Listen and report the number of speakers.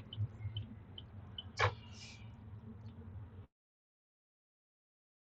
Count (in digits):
0